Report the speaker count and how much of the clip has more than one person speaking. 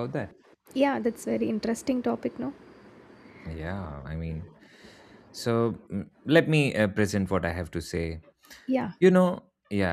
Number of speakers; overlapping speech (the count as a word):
two, no overlap